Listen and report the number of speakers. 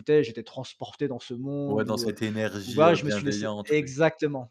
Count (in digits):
2